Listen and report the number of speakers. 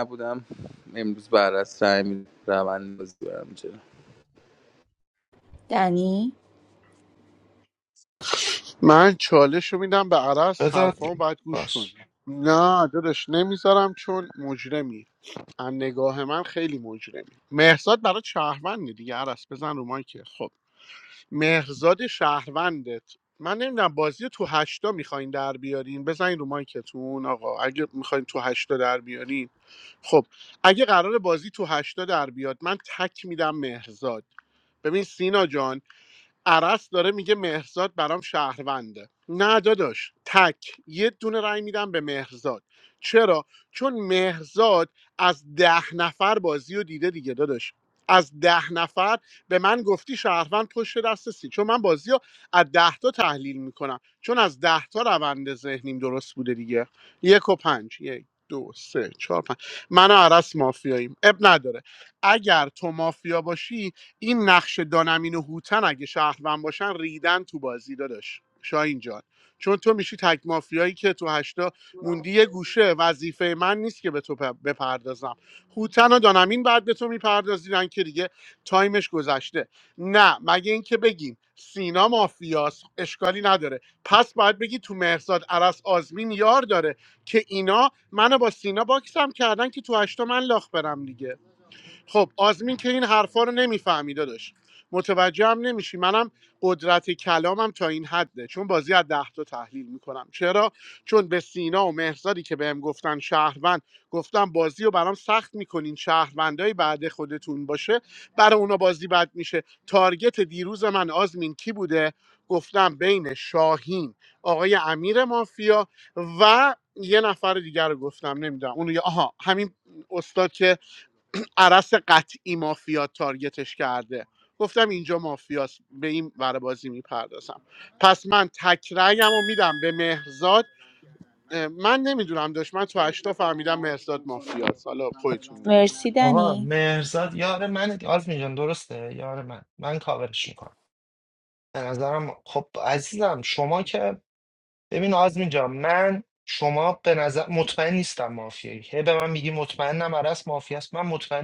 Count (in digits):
4